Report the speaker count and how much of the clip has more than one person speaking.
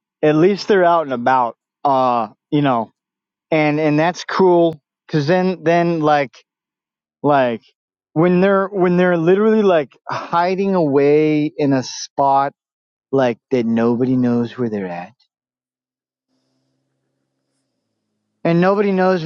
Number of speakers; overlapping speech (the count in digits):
1, no overlap